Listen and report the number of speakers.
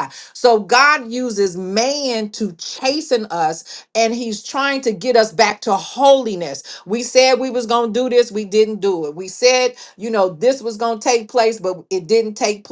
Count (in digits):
1